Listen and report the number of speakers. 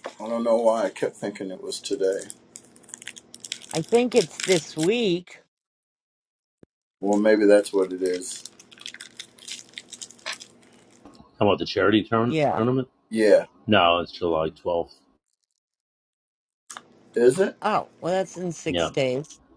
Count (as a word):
three